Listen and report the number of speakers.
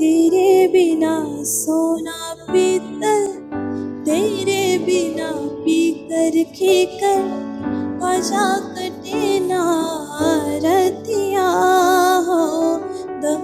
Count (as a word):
one